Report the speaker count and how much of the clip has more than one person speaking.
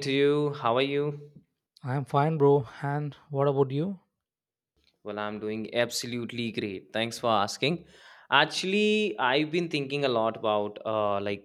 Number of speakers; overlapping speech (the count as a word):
two, no overlap